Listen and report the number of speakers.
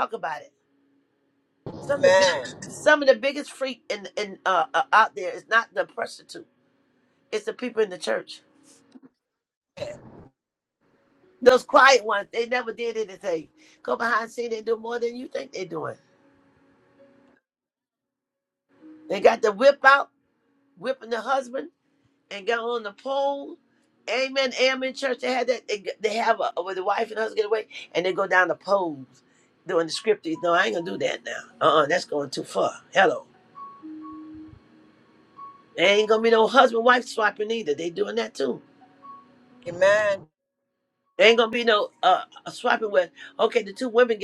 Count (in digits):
2